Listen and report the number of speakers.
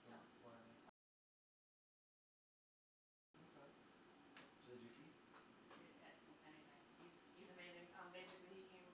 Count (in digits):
2